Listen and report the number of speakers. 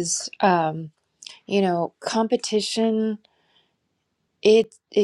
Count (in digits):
1